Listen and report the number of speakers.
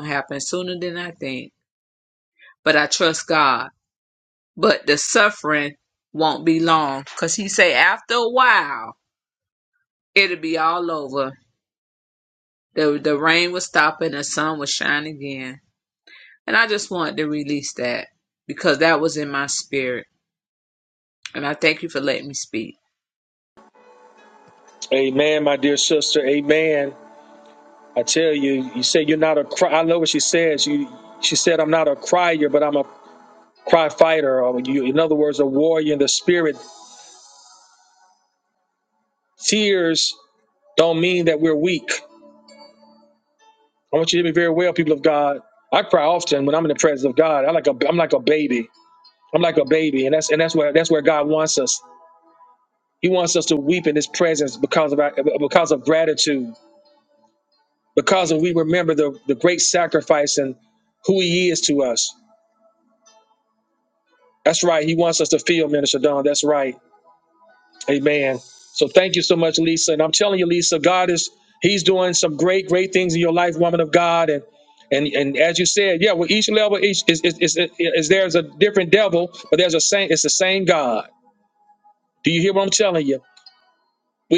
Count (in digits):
2